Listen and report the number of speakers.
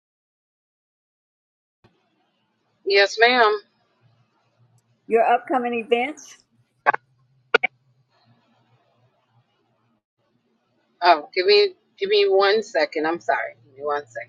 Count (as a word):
two